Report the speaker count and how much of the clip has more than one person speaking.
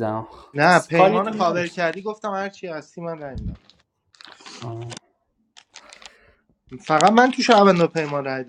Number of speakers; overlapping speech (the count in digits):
2, about 8%